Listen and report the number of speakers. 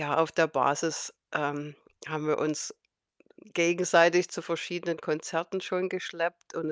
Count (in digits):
1